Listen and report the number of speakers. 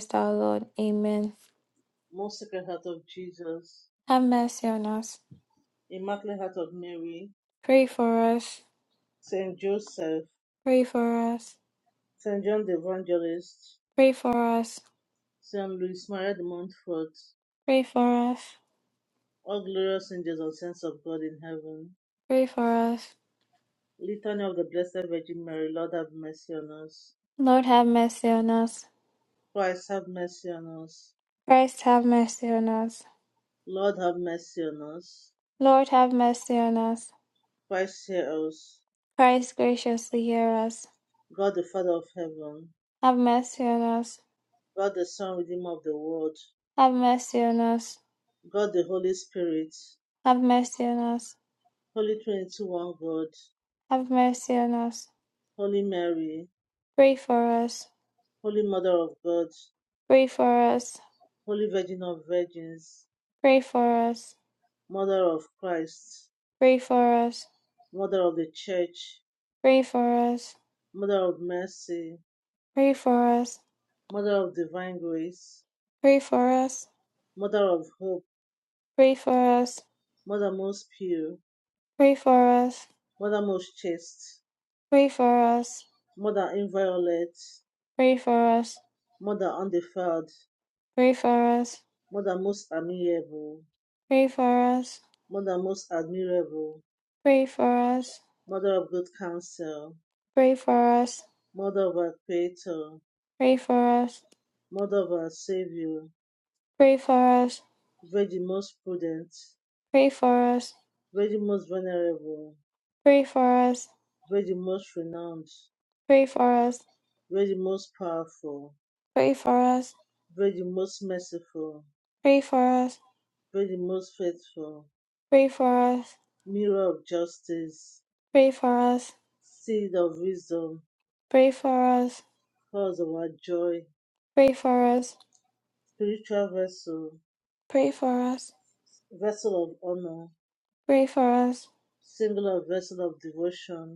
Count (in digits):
2